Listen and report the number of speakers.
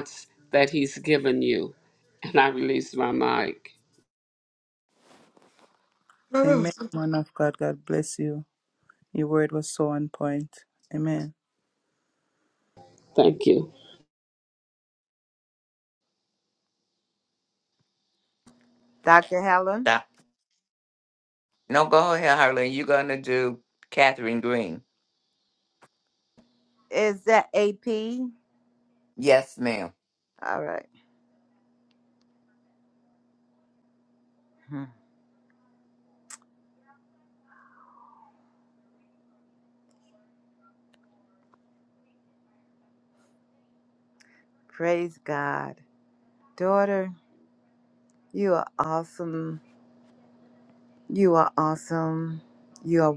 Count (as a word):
four